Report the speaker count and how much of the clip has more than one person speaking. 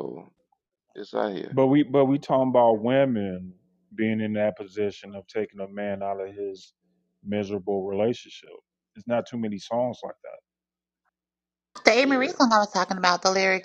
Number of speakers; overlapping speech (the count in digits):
3, about 2%